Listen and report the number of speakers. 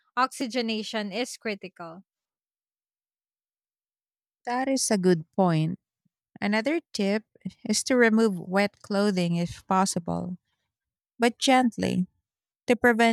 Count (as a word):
two